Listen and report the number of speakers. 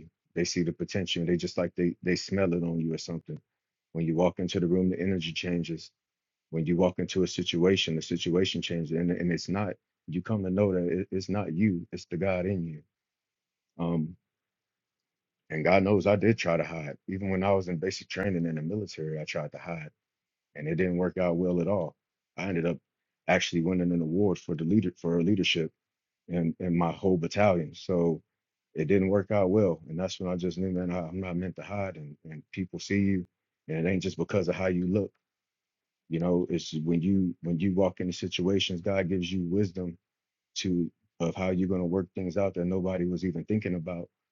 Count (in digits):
1